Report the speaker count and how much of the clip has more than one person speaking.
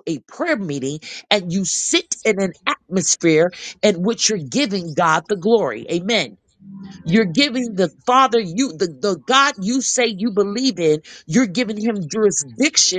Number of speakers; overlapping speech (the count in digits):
1, no overlap